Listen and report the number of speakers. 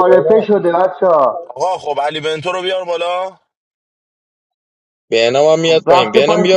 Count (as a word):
three